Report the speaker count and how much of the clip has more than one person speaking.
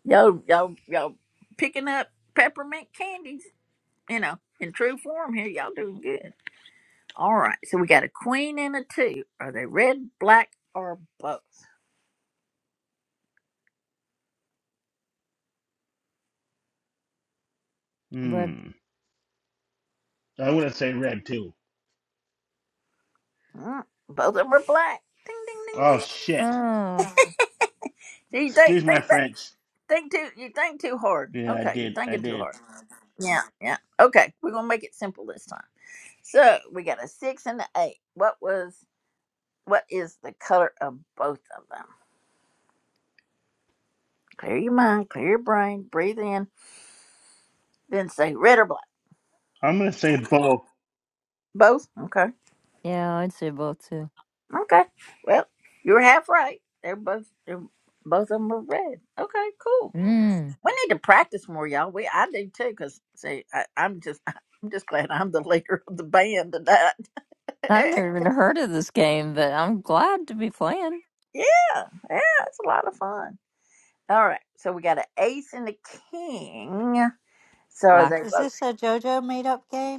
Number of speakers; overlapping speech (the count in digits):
4, about 4%